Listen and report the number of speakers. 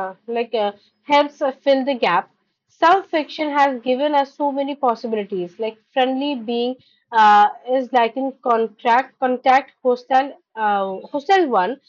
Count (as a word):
one